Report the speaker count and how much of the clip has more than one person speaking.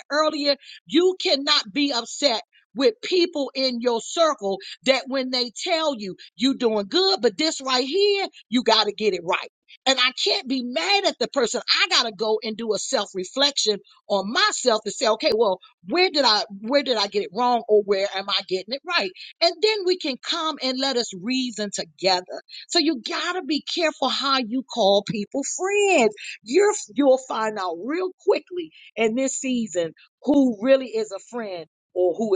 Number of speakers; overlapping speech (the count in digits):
1, no overlap